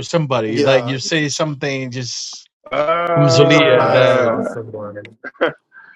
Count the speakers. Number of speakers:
3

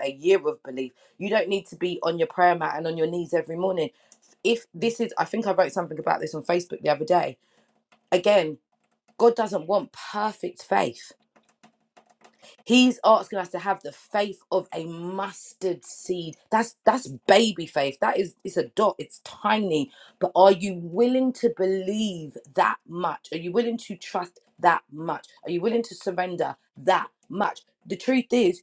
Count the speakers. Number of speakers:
1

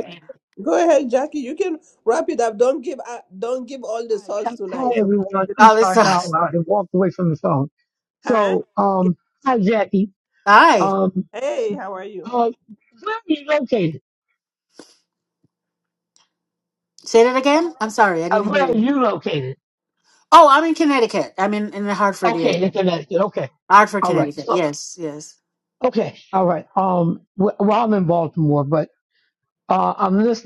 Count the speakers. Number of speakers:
3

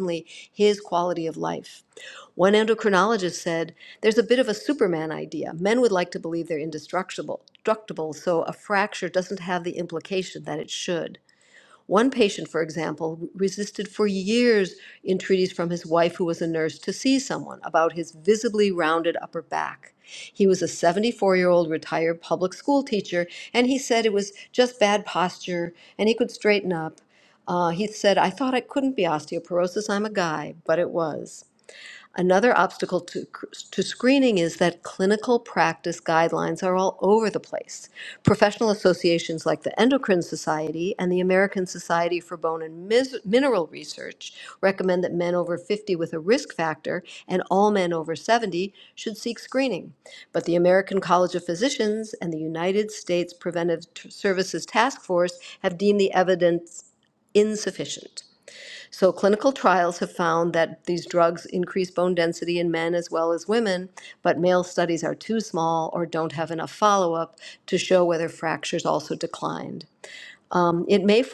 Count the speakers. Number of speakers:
1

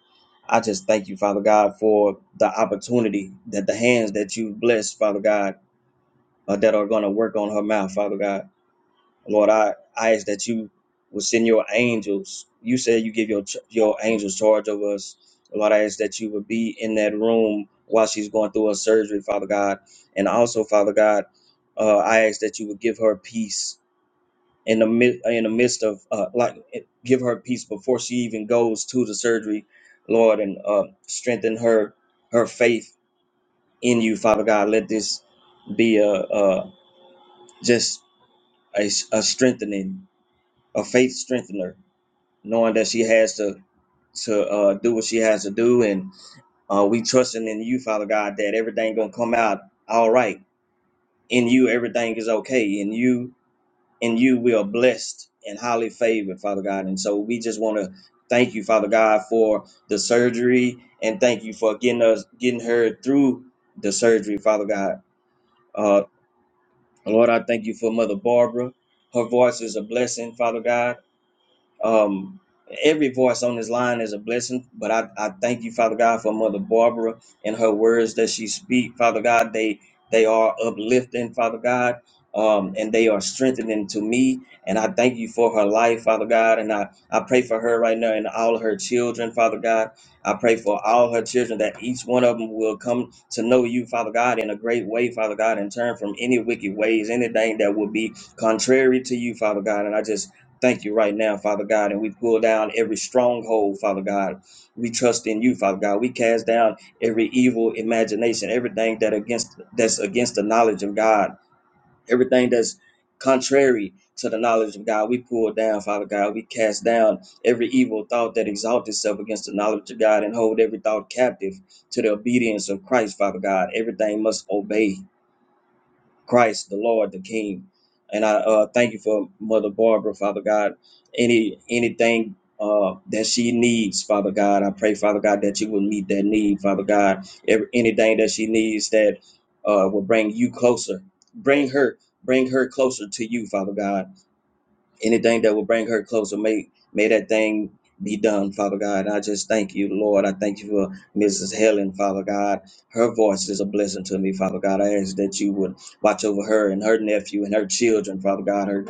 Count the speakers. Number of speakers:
1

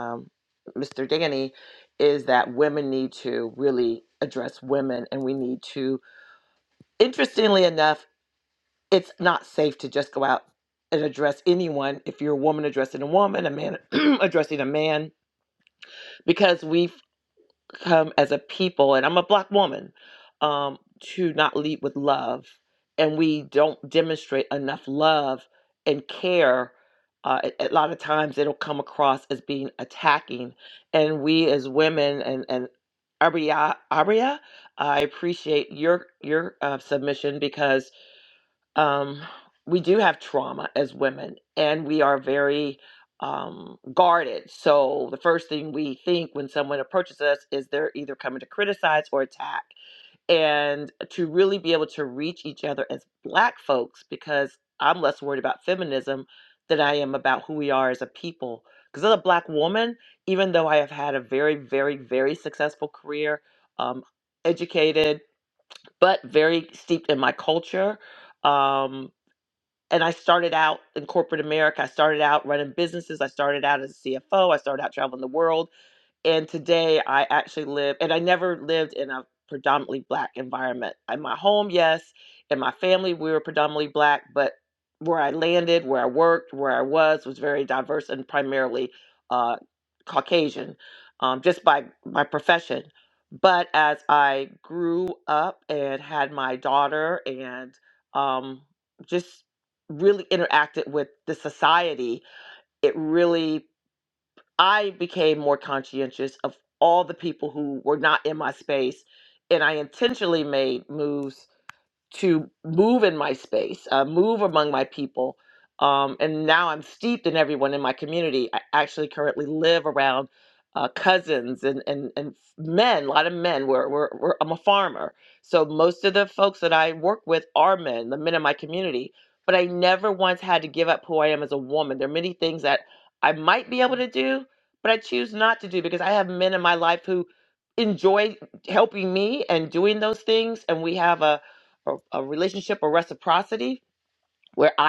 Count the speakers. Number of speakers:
1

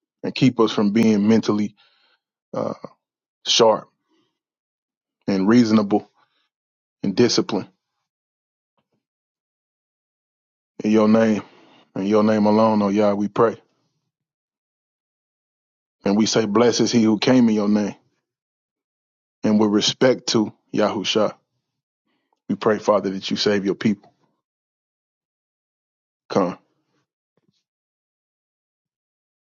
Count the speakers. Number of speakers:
1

